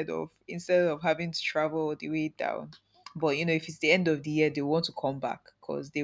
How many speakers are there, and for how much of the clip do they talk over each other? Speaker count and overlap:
one, no overlap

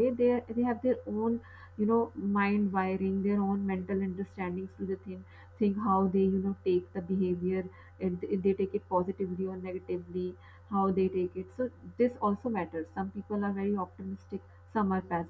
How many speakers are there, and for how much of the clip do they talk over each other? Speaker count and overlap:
one, no overlap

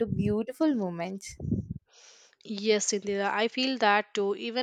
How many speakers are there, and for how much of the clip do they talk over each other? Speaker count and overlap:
two, no overlap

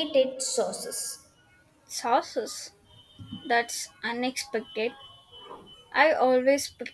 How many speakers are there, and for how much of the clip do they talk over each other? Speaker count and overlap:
two, no overlap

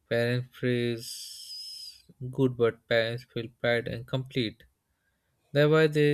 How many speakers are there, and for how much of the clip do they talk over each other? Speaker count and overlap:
one, no overlap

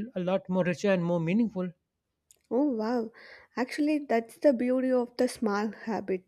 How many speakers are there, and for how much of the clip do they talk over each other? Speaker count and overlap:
two, no overlap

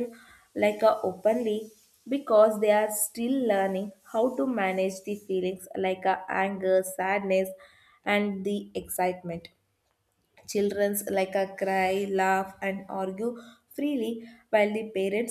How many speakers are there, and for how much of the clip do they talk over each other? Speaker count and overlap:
one, no overlap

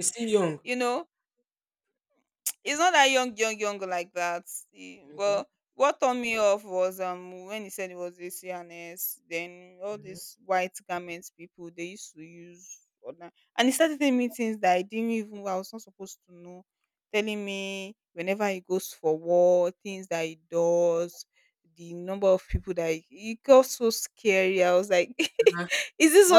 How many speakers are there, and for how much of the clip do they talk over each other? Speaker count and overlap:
two, about 1%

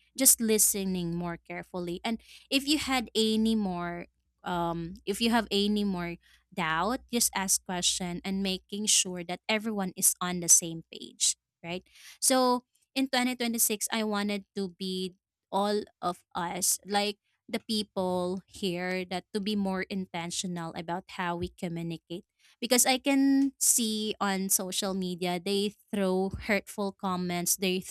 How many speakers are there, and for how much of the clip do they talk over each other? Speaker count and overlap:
one, no overlap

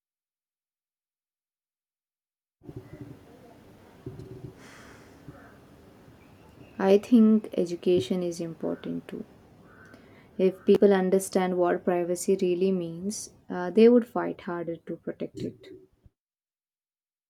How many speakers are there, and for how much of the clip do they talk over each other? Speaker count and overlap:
one, no overlap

